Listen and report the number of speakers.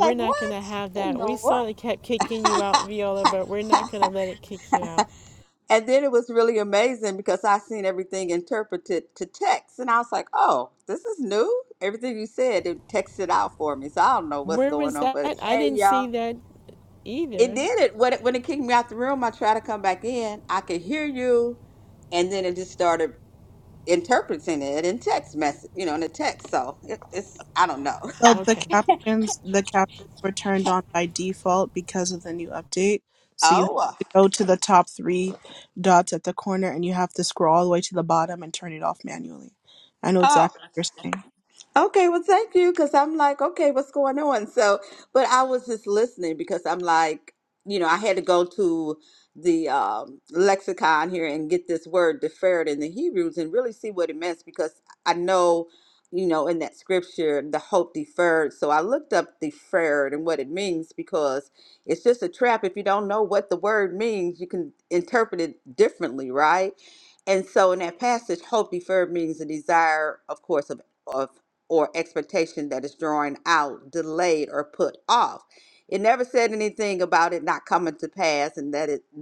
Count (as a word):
three